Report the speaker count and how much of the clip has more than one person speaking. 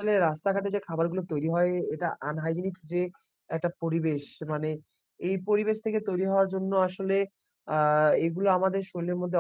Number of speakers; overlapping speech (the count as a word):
one, no overlap